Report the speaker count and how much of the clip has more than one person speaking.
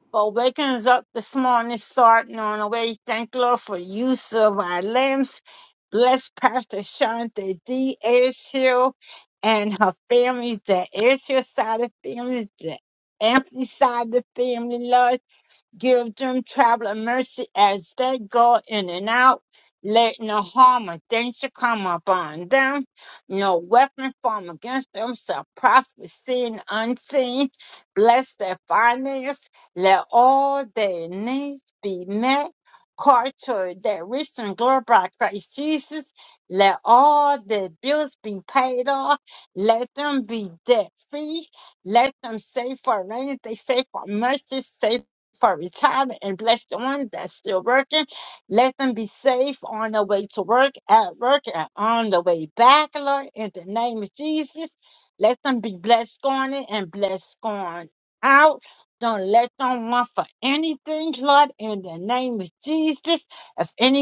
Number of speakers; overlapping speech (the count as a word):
one, no overlap